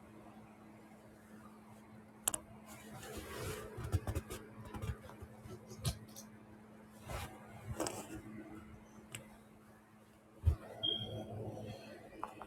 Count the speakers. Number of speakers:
0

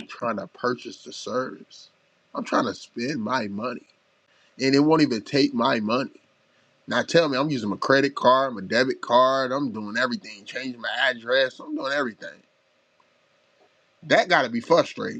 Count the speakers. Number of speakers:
1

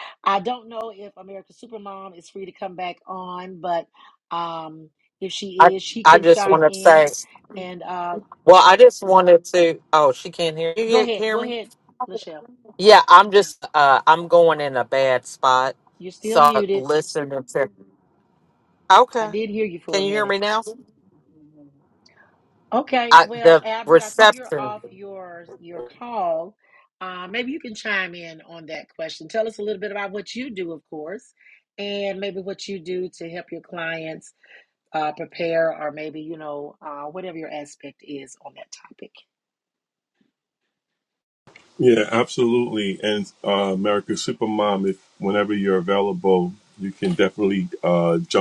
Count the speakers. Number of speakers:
3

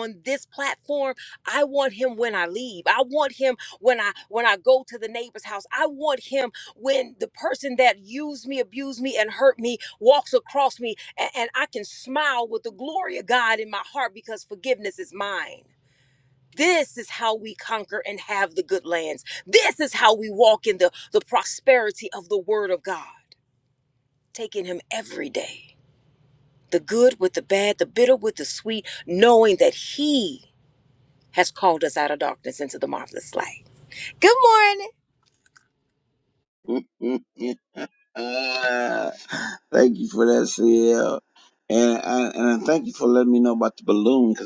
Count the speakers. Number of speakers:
2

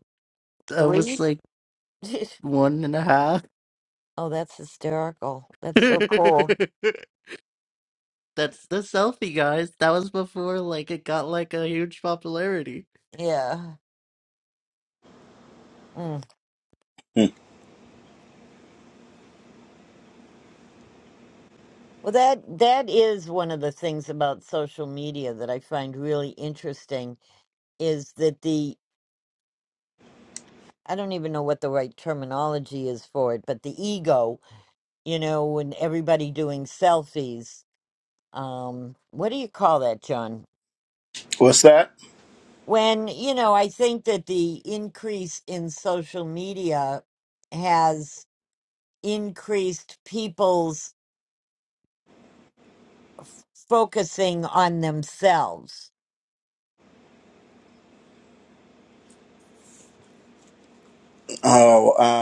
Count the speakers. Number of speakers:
3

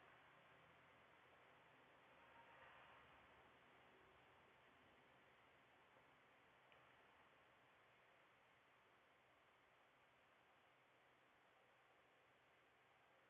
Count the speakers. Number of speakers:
0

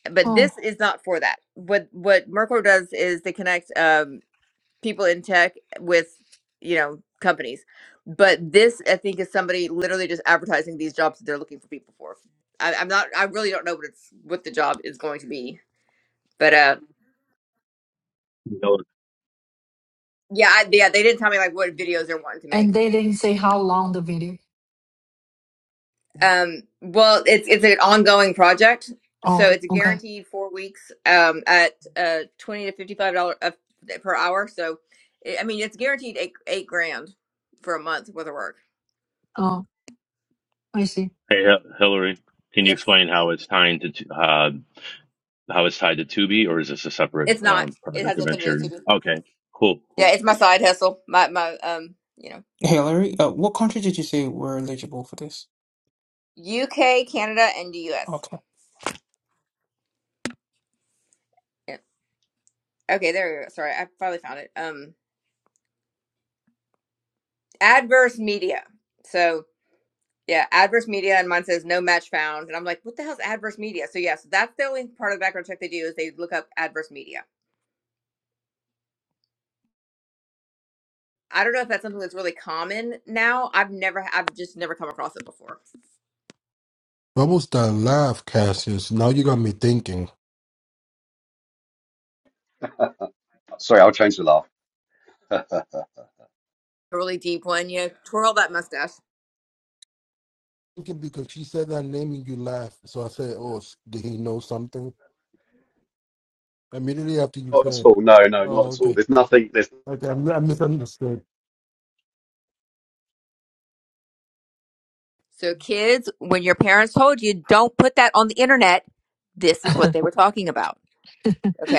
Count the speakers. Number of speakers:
6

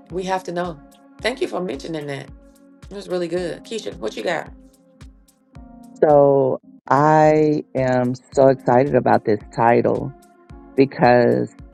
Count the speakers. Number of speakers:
2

